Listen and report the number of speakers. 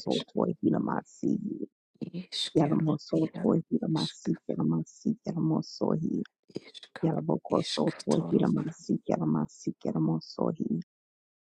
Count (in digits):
2